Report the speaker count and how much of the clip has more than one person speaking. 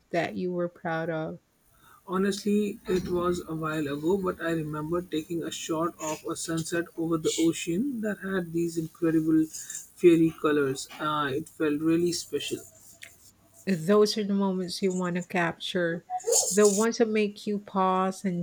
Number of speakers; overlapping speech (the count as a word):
two, no overlap